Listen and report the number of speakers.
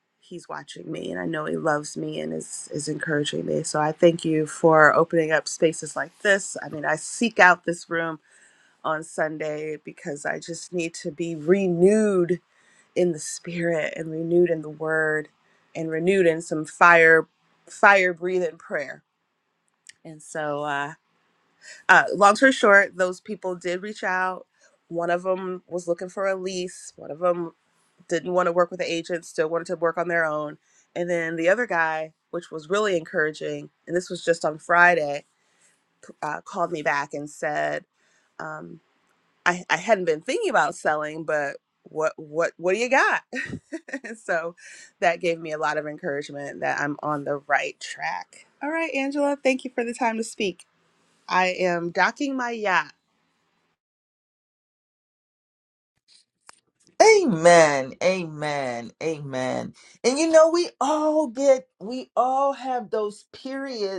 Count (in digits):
2